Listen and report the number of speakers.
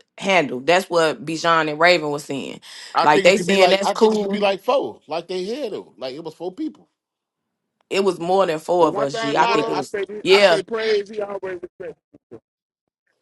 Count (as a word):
three